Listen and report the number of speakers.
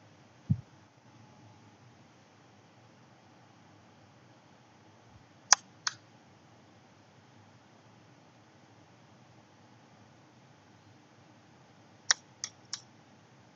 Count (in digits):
0